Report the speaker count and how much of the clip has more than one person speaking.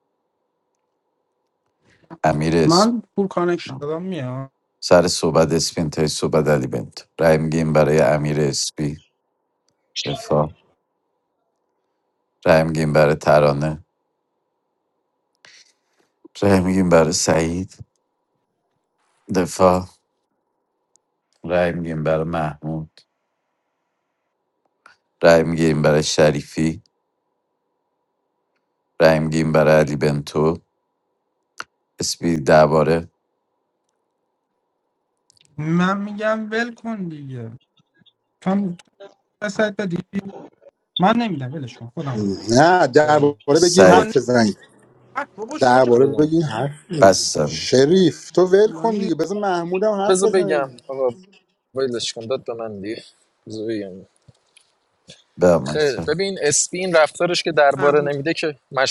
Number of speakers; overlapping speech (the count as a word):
four, about 6%